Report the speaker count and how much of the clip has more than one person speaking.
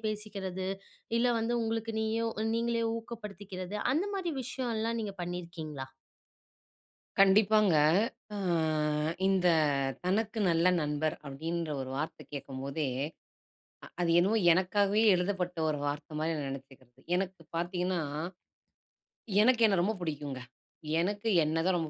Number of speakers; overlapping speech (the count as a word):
two, no overlap